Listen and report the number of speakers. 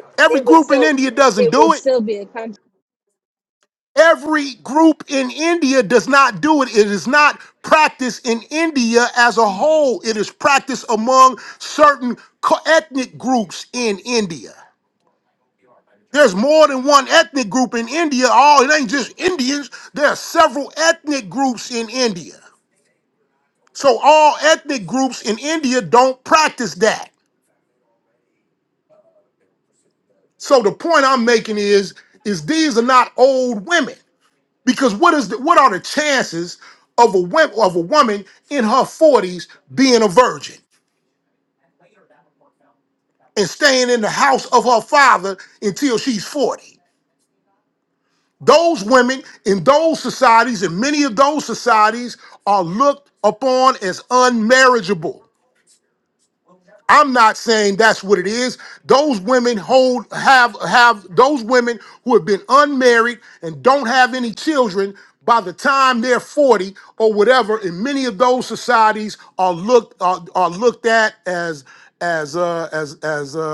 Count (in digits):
2